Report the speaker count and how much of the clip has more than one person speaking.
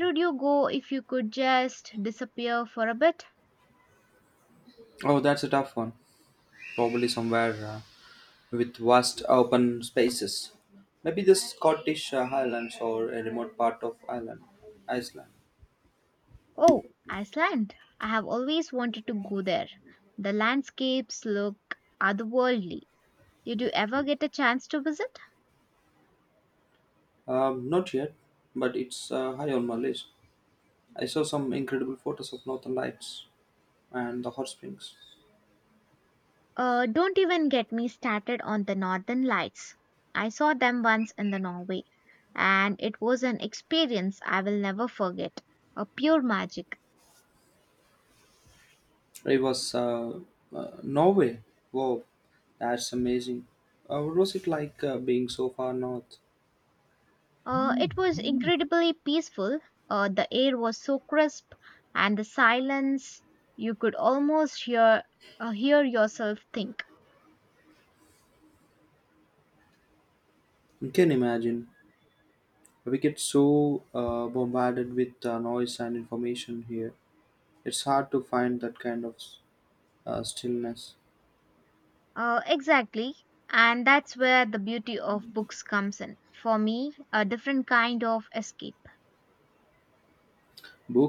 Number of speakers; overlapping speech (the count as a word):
two, no overlap